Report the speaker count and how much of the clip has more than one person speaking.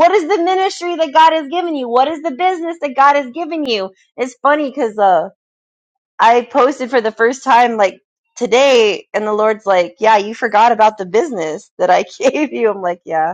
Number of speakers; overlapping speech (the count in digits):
1, no overlap